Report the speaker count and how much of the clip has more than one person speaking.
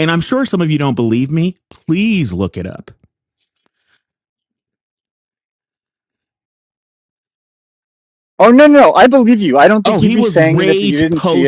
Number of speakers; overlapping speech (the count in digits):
2, about 14%